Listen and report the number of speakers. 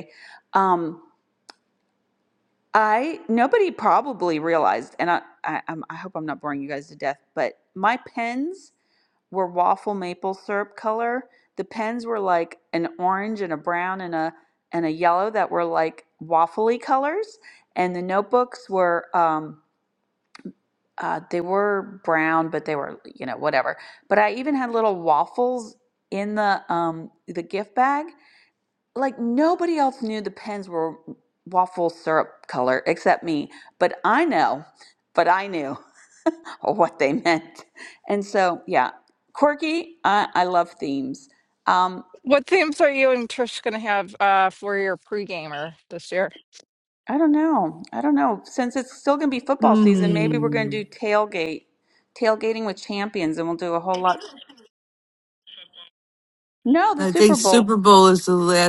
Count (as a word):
three